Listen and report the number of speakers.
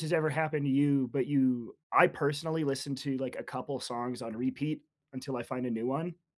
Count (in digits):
1